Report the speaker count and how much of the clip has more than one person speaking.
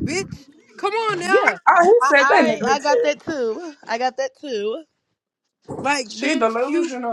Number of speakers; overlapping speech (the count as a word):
three, about 32%